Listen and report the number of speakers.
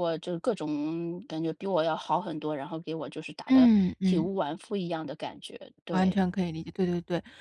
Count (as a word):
two